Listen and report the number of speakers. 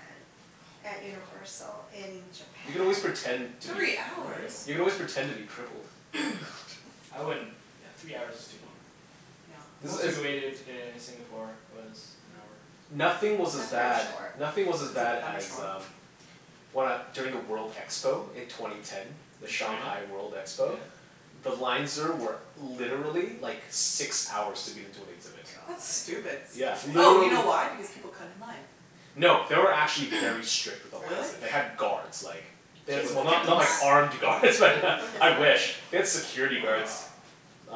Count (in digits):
4